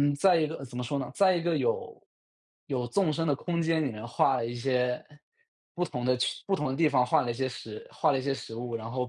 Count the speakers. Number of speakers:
1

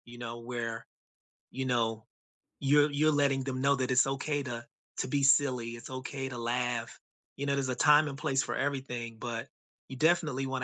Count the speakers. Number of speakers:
1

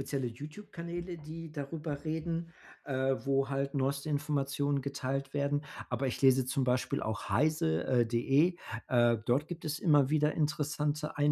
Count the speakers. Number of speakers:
1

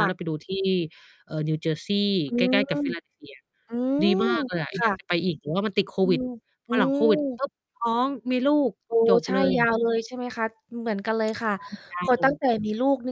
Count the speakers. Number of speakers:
2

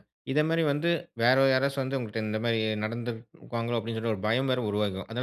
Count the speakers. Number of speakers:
1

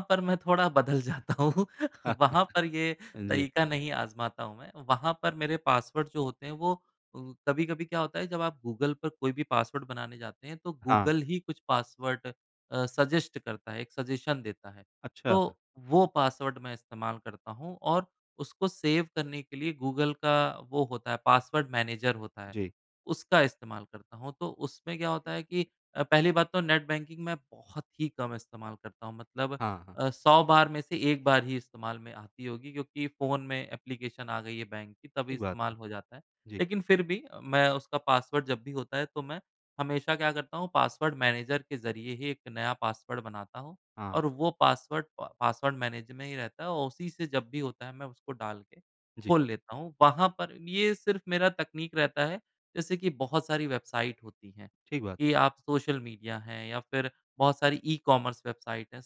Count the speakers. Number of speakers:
2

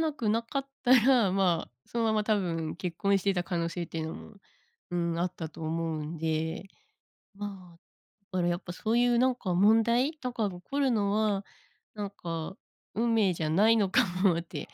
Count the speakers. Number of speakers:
1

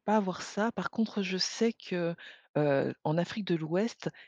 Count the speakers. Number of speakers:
1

